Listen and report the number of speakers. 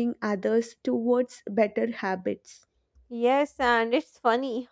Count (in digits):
2